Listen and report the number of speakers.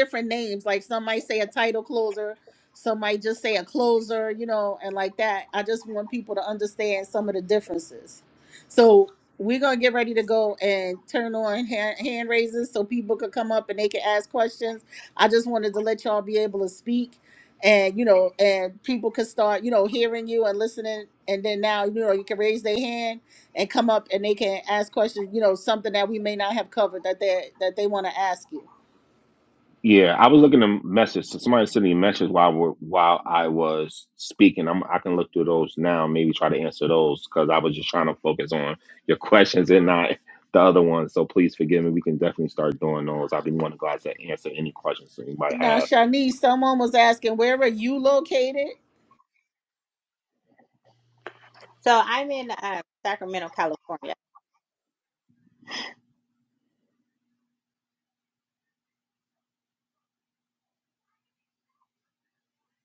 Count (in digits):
3